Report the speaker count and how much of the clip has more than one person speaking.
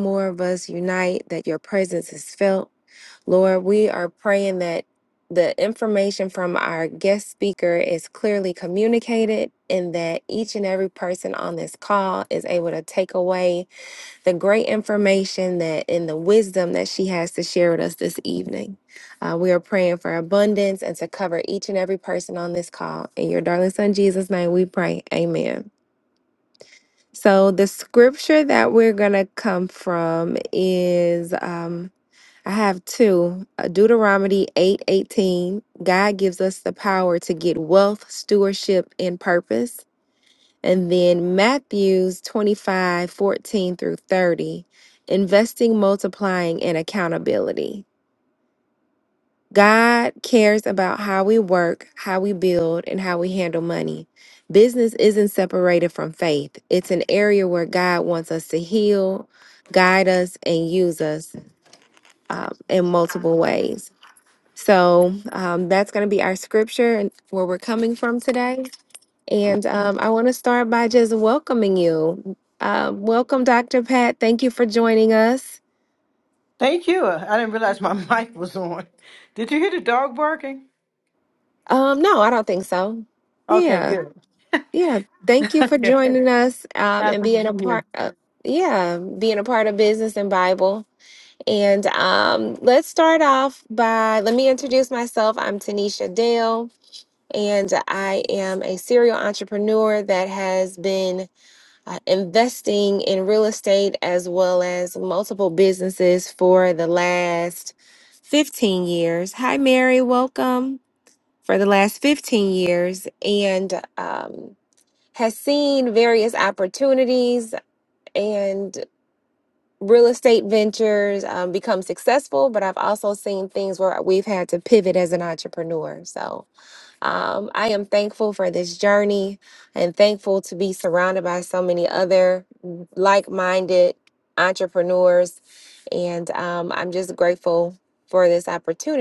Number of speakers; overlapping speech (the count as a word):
two, about 1%